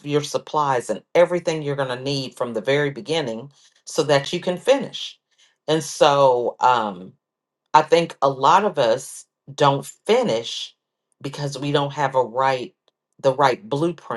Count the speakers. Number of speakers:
one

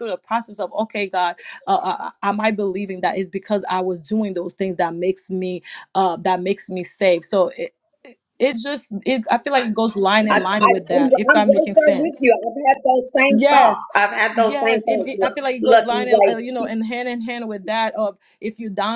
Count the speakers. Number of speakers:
two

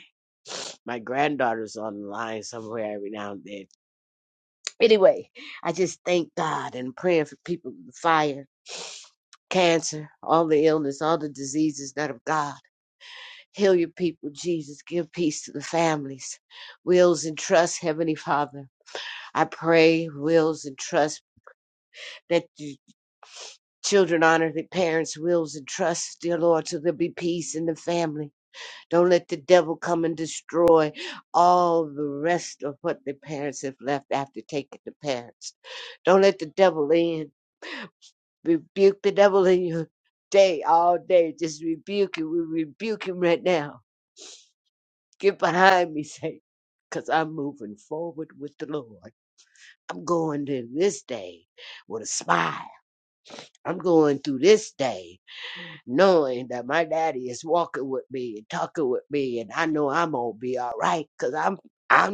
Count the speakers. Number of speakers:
one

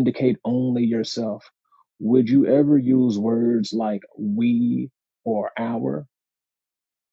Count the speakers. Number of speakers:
one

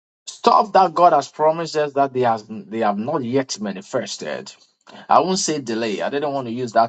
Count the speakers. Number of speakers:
one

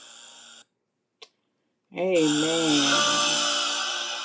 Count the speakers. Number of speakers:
one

